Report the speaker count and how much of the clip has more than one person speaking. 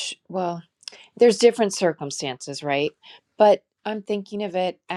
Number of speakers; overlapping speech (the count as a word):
one, no overlap